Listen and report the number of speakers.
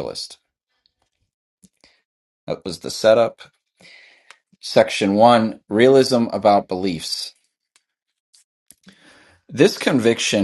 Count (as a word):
one